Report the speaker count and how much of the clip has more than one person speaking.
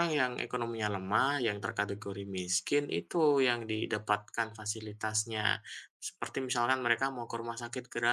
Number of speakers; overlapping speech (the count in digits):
1, no overlap